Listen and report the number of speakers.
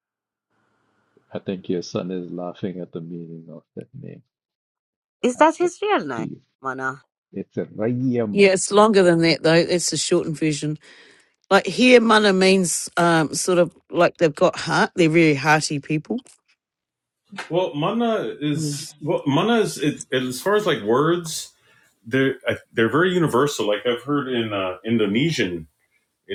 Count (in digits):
4